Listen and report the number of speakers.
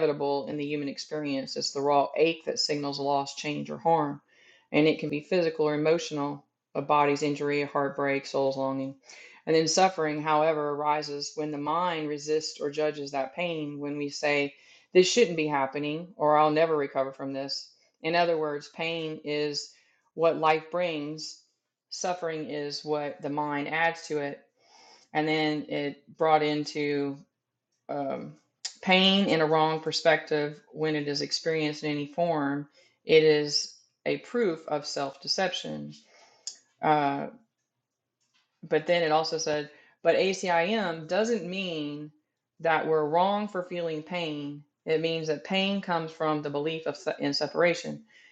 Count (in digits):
1